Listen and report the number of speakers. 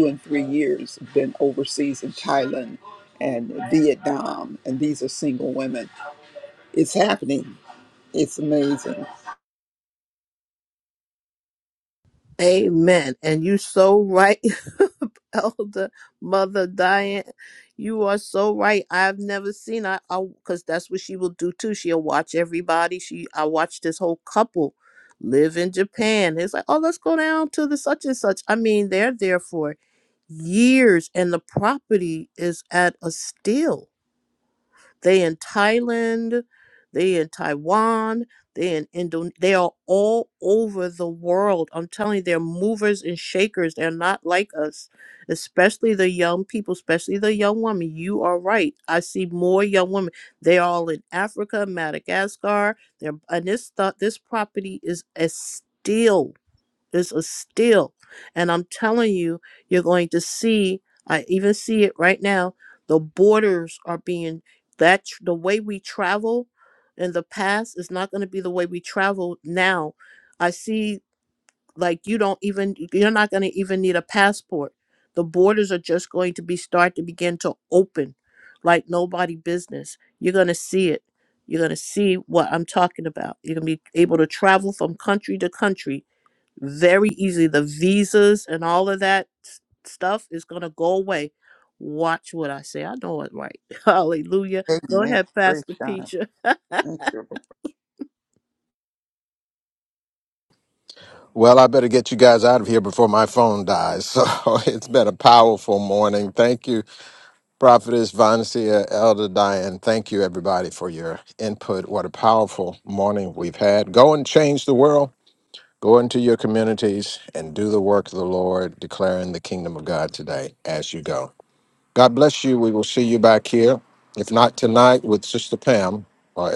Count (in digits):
3